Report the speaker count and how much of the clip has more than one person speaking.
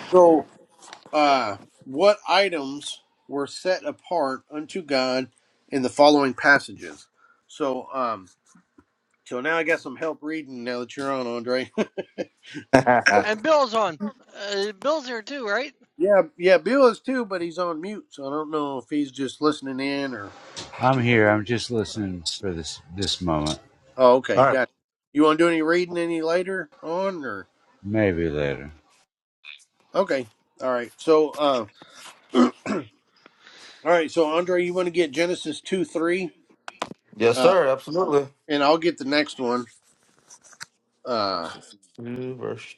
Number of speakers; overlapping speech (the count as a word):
four, about 2%